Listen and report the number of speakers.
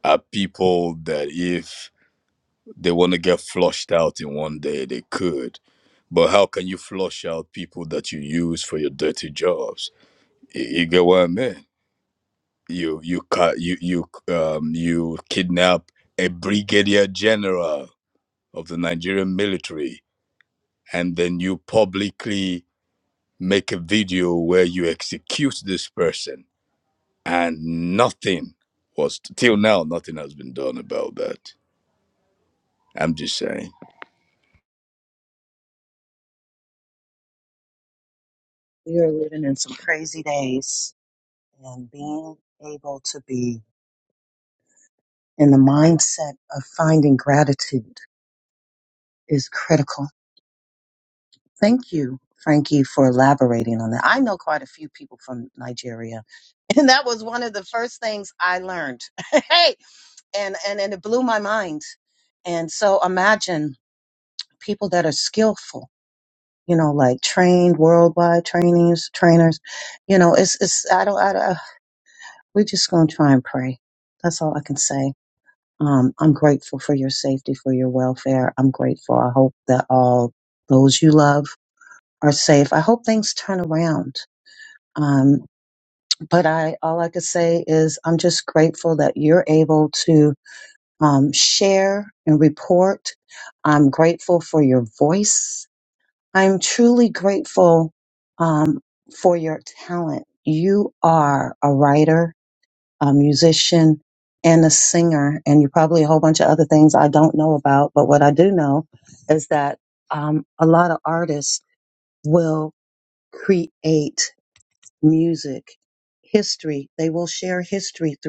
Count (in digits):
2